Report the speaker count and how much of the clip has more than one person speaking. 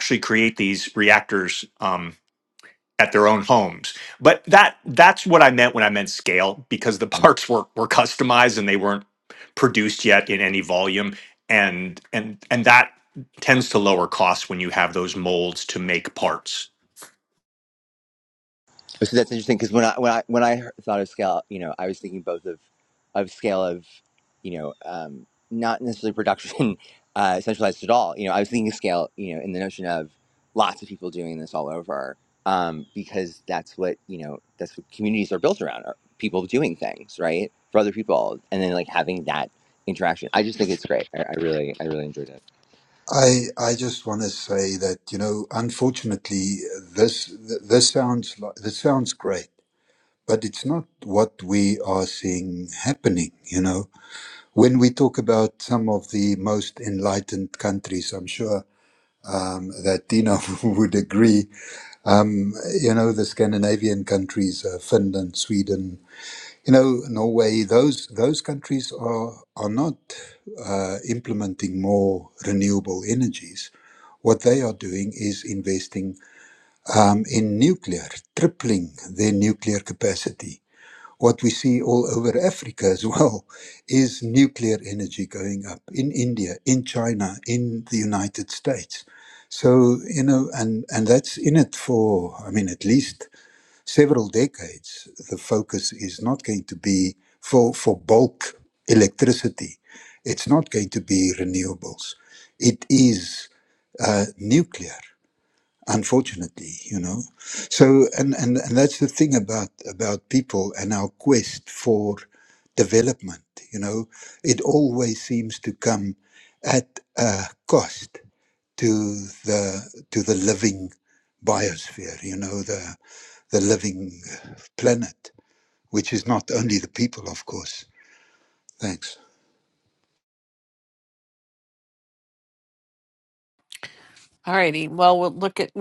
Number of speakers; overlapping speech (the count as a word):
four, no overlap